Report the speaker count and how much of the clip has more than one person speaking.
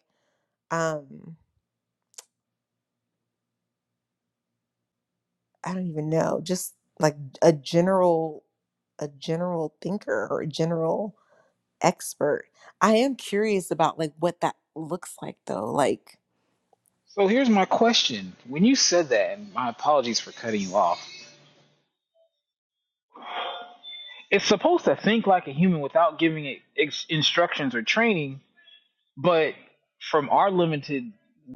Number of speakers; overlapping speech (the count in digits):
2, no overlap